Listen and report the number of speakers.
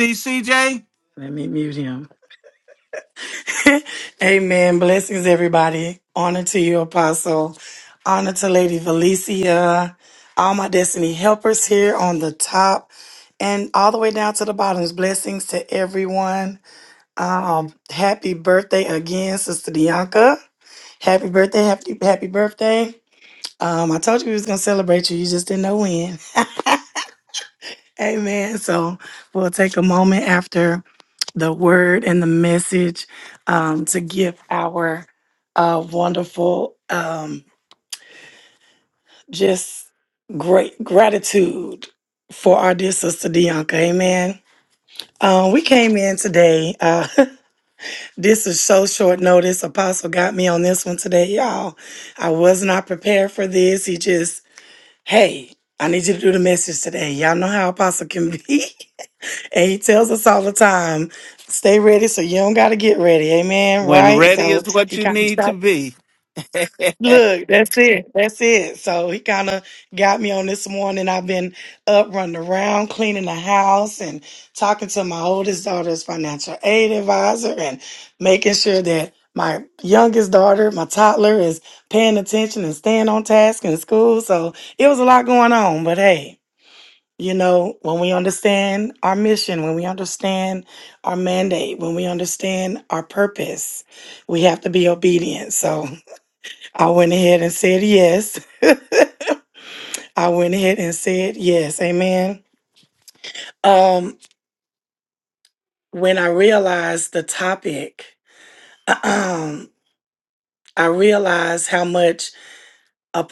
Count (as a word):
two